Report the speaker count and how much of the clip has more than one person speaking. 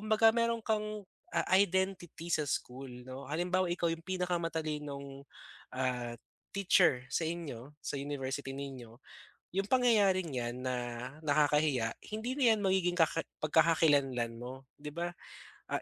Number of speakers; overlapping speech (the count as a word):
one, no overlap